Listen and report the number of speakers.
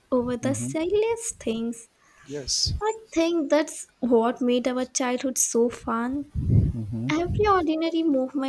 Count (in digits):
2